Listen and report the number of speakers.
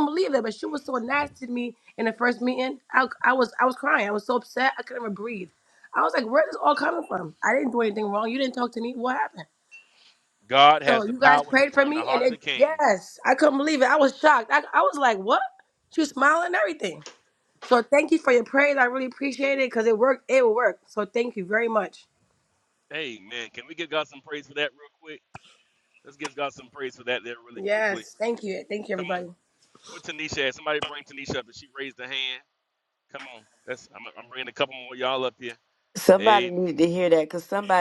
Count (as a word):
three